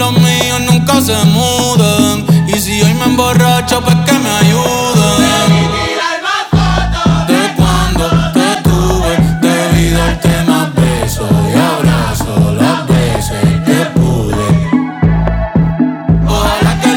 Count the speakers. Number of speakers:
1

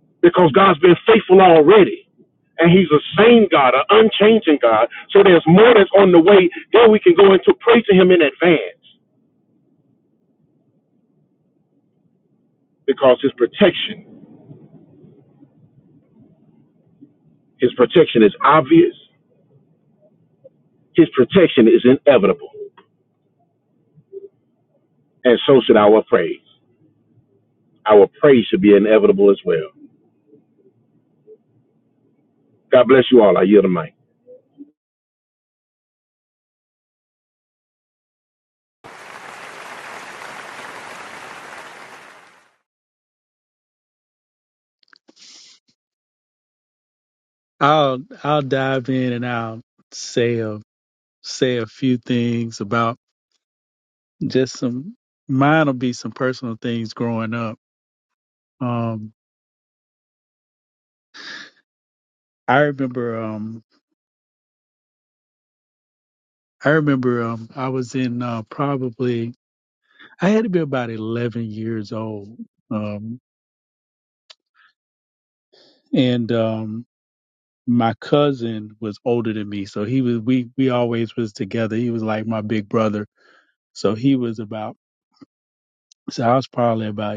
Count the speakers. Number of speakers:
2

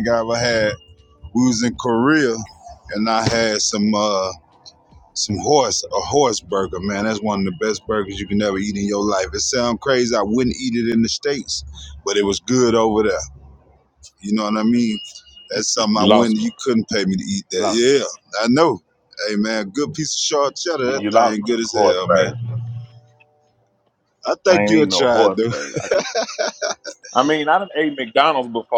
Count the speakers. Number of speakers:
2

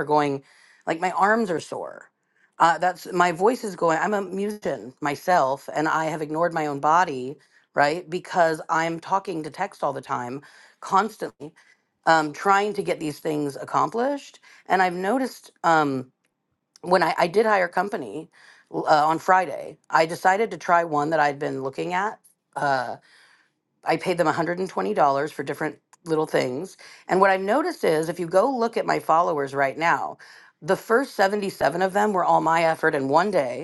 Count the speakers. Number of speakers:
1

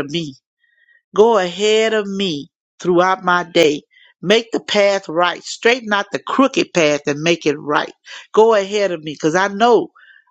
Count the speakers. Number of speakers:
1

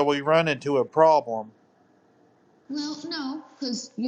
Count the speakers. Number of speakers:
2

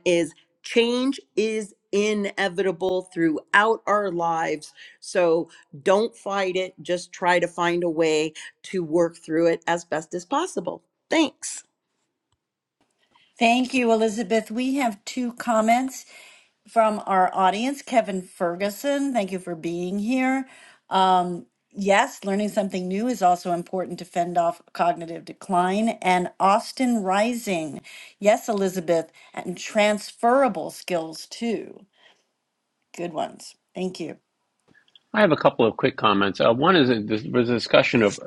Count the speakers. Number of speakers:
3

